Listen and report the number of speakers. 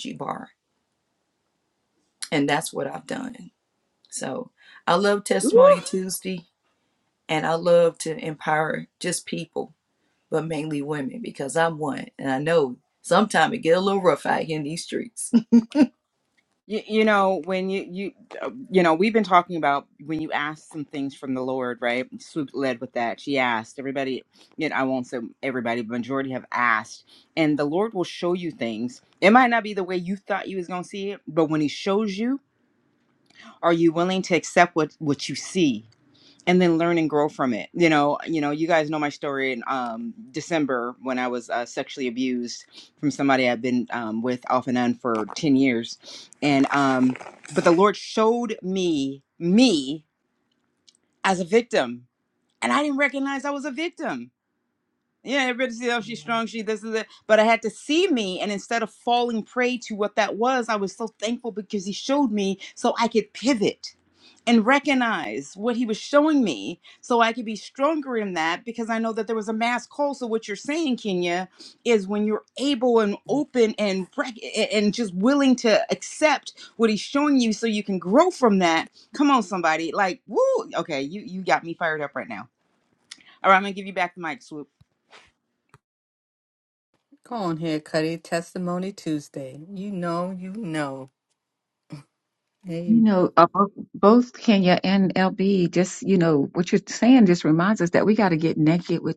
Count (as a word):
four